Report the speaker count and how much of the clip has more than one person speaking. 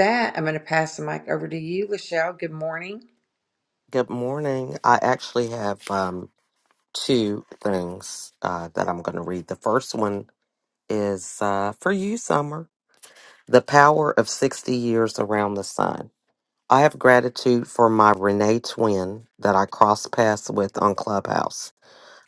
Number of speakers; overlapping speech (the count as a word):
two, no overlap